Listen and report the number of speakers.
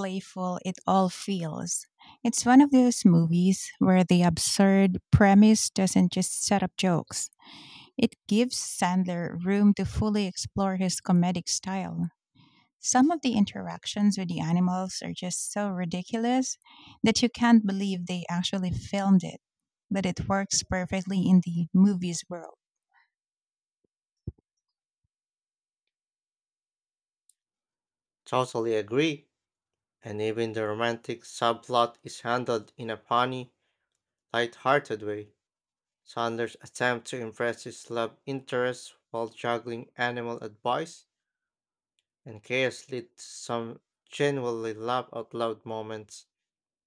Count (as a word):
two